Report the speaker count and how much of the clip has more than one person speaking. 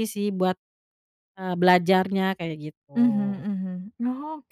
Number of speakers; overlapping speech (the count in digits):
2, no overlap